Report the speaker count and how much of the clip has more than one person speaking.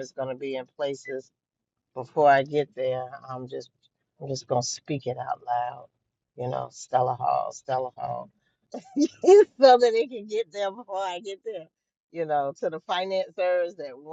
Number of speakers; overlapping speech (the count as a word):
one, no overlap